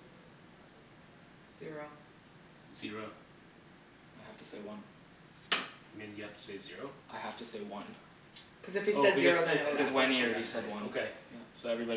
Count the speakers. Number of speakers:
three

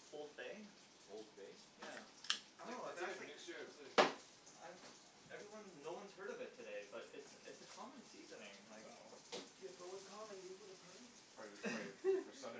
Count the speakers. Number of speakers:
four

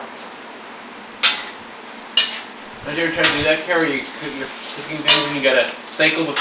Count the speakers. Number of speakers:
one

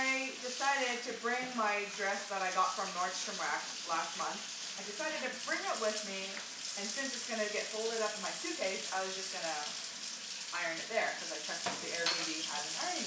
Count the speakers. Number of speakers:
one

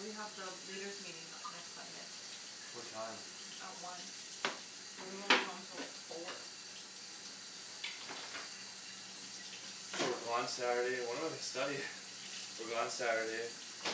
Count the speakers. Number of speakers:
two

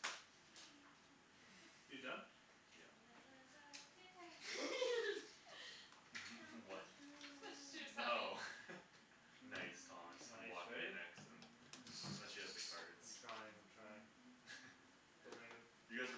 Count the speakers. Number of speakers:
four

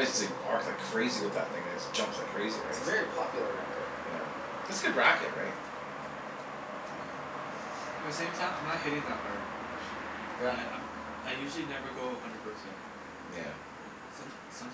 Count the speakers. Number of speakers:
three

